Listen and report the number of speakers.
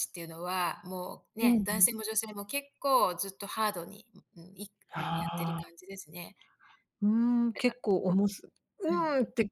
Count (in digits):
2